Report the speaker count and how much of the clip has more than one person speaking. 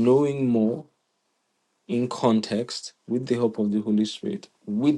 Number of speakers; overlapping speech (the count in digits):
1, no overlap